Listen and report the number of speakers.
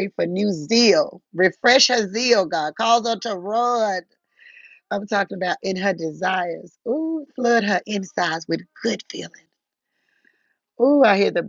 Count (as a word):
one